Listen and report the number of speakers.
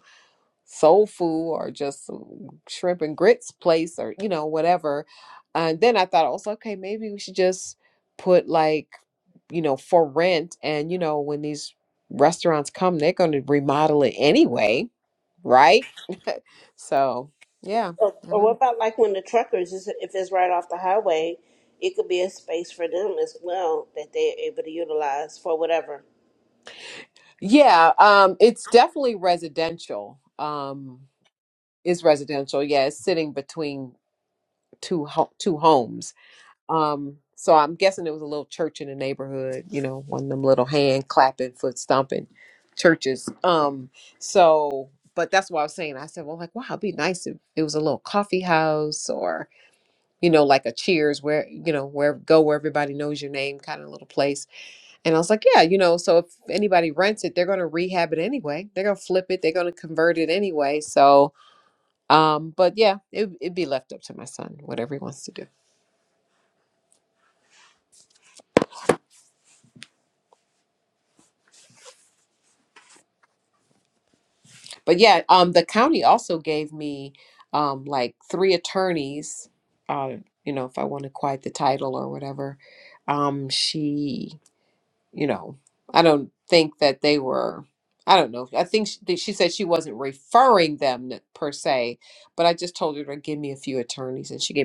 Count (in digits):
2